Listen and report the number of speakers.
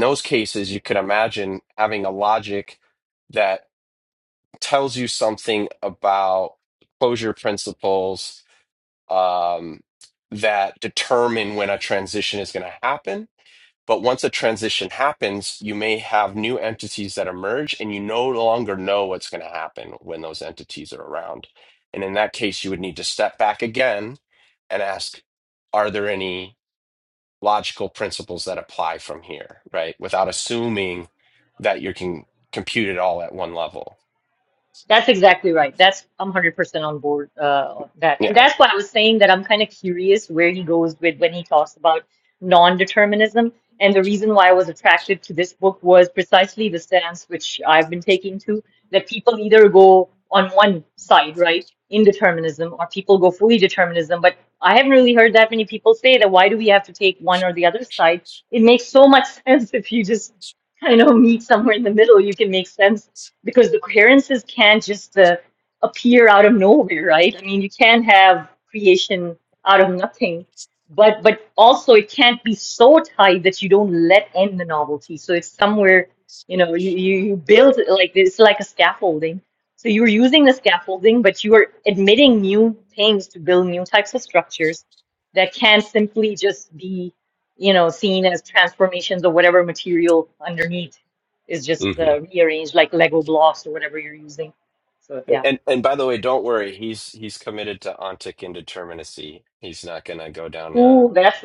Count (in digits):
2